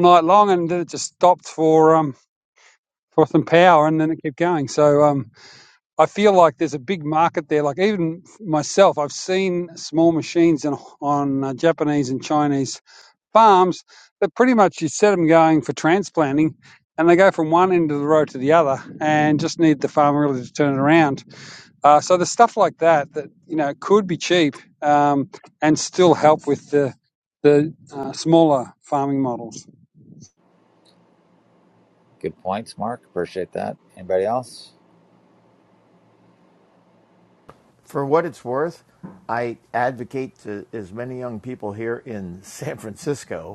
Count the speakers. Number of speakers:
3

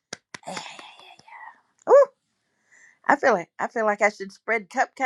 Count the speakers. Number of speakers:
1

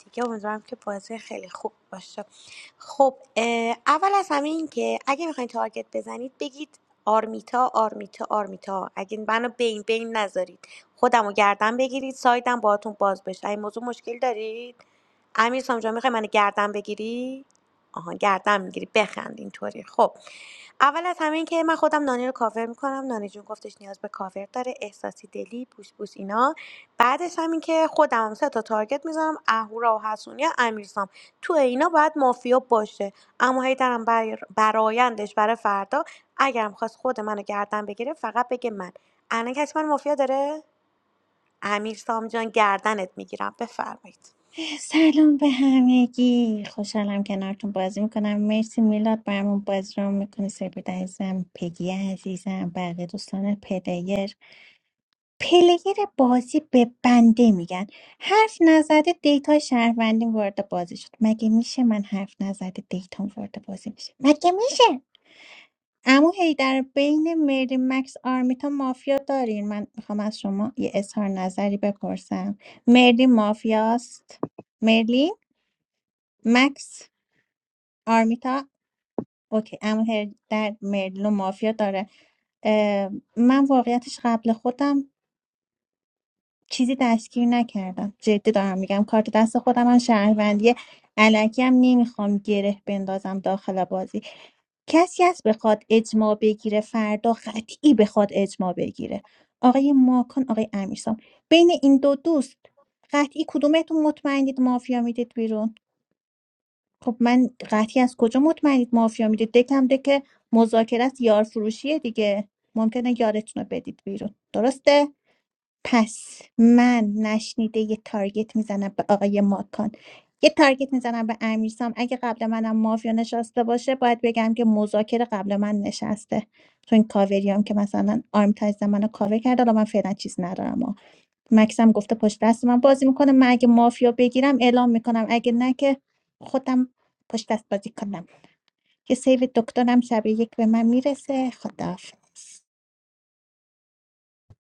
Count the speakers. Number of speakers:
2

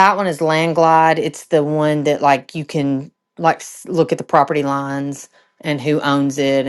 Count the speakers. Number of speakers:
1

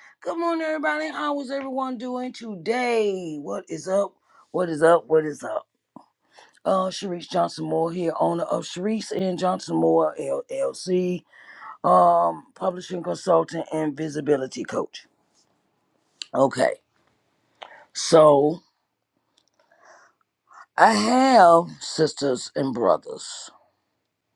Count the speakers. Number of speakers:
1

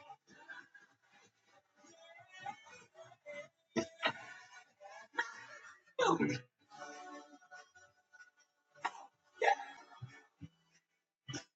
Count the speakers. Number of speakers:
0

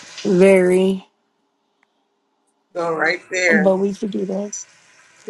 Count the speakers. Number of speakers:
2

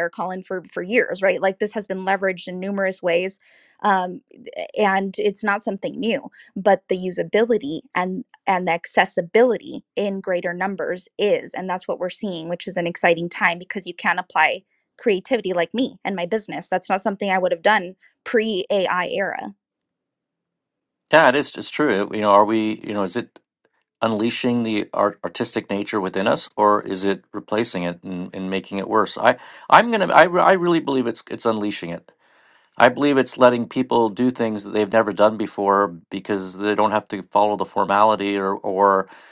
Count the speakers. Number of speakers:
2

